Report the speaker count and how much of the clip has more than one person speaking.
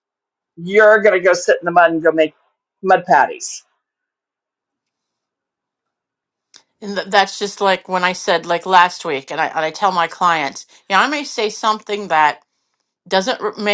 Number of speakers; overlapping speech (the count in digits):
2, no overlap